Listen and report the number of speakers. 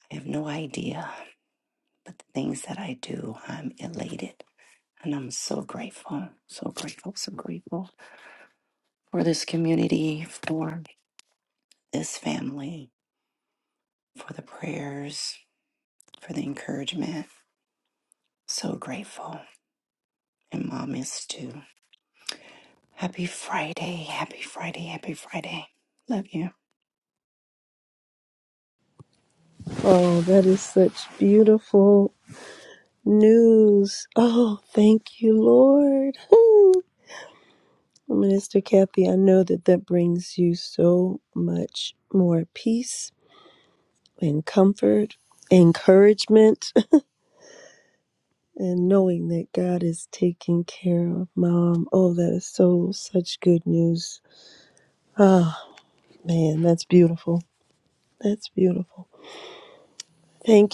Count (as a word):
two